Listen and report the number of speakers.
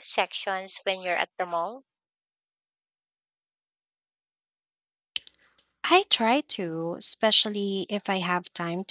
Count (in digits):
2